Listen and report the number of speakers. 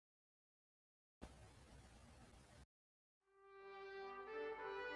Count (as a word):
zero